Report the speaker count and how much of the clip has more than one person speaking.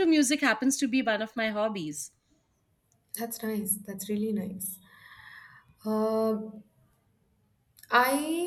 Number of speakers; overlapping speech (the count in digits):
2, no overlap